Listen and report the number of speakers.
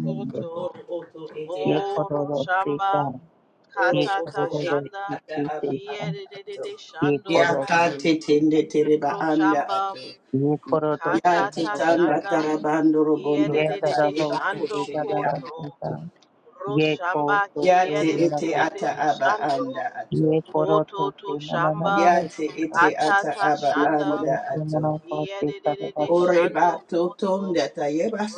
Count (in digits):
3